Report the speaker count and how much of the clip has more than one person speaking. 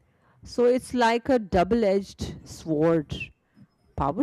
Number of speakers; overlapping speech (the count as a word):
one, no overlap